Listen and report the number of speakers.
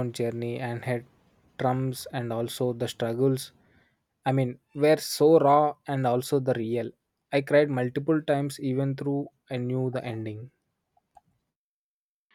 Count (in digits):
1